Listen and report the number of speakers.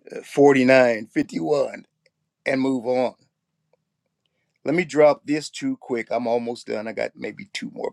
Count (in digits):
1